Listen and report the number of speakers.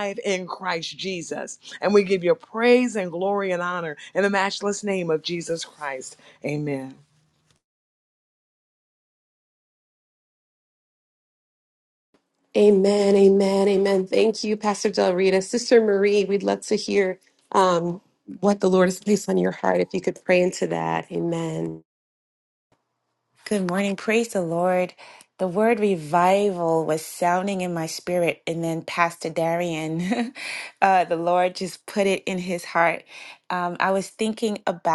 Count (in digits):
3